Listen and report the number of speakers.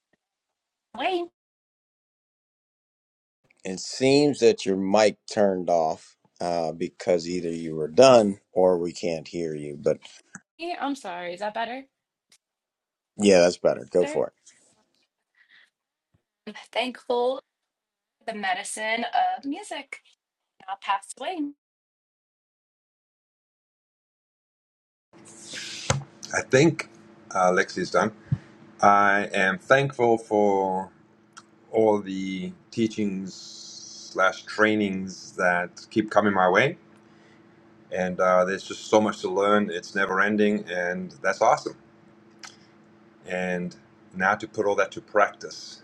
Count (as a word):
three